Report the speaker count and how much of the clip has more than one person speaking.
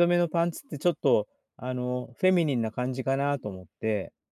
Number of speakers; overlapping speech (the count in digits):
1, no overlap